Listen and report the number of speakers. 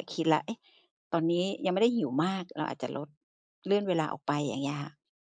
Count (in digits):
1